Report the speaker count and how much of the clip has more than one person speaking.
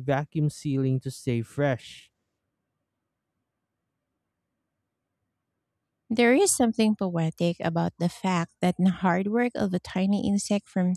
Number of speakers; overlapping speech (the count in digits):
2, no overlap